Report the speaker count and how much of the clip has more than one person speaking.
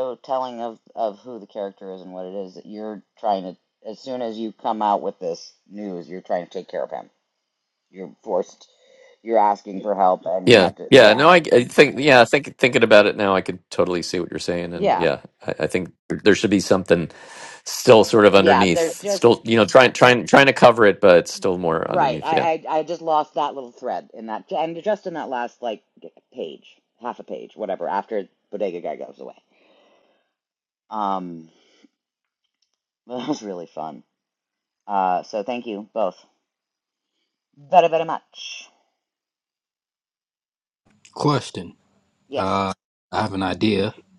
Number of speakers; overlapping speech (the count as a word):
three, about 6%